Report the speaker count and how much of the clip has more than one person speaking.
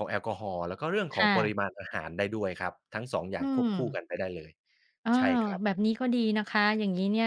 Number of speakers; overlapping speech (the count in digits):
2, about 18%